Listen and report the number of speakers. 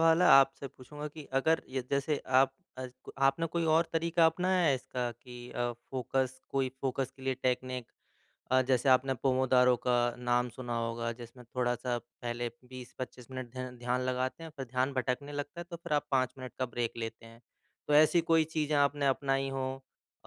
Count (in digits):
1